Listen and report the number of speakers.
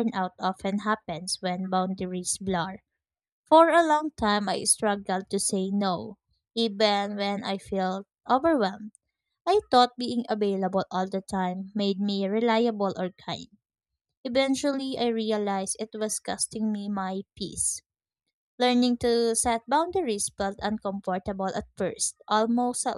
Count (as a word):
one